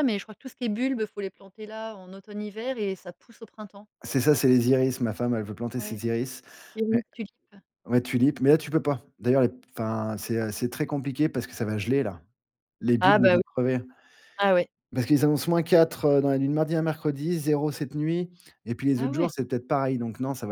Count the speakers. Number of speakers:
2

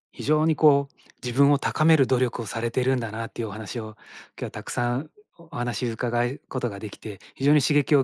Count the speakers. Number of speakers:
1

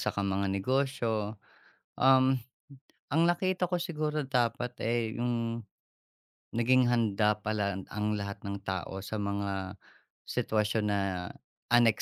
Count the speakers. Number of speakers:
1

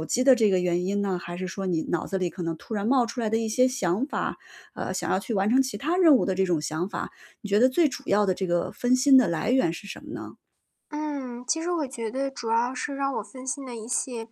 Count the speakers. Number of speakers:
2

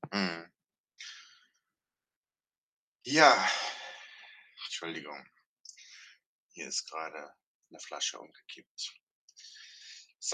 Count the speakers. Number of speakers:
1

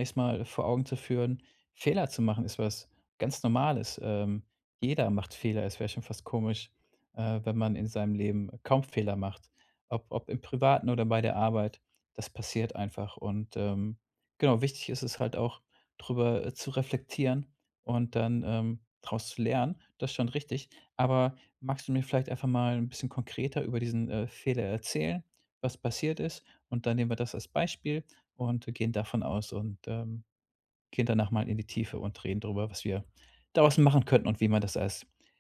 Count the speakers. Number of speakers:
1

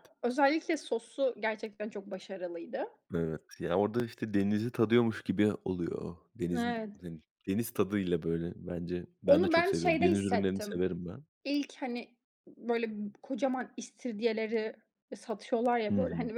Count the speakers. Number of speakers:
2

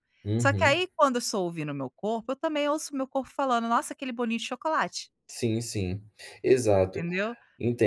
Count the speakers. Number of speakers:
2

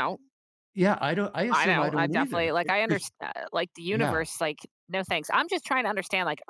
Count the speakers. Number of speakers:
2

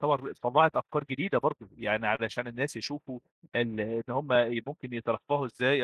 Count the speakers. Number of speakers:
1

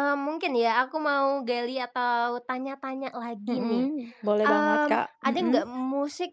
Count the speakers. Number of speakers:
2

